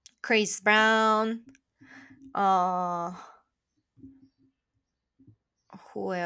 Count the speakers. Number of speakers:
one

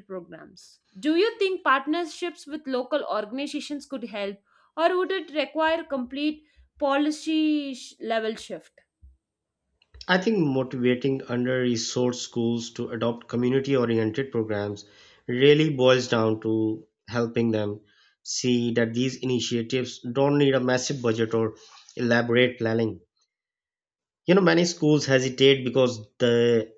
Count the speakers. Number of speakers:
two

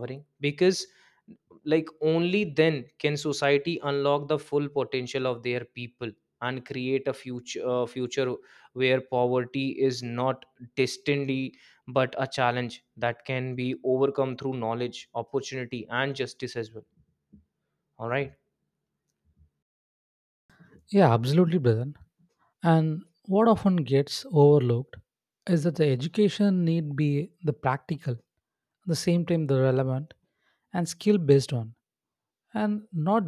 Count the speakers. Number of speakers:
two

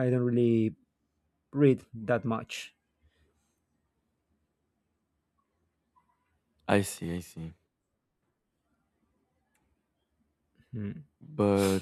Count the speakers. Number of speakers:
two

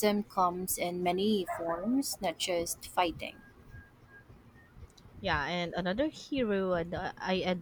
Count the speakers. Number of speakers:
two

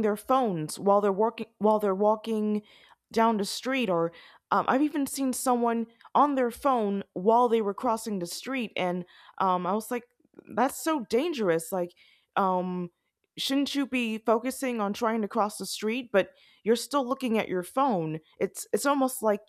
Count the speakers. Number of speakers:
one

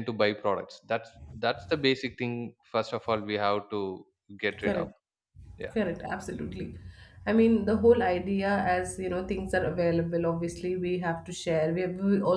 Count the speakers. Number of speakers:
two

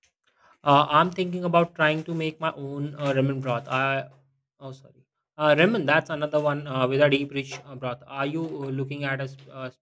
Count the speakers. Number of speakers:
one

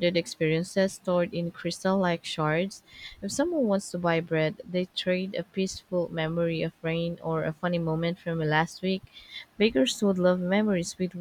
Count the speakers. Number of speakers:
one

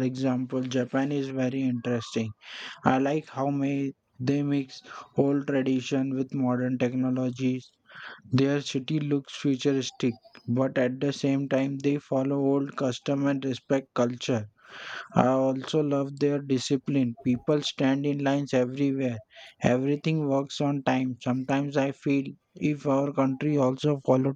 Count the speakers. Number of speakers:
one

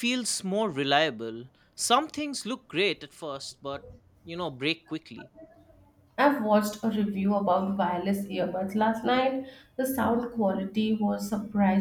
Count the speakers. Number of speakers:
two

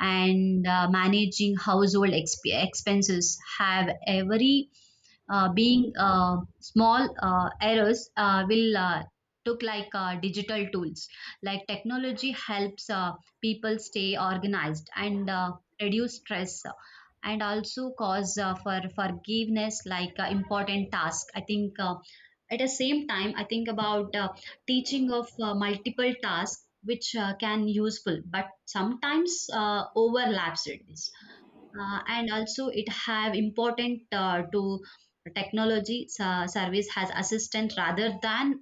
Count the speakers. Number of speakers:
one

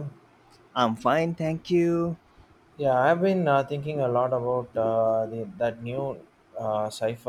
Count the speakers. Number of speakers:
two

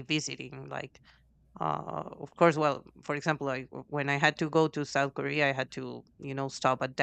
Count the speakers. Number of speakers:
one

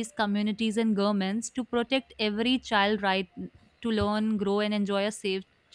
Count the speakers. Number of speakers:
one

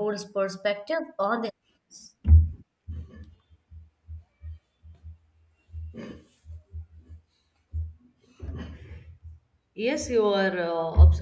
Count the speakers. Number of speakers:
two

